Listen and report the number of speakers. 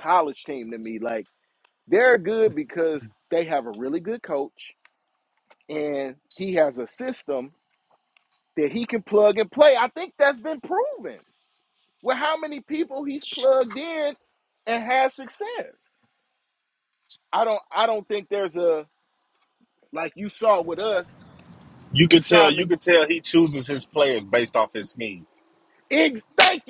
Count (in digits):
2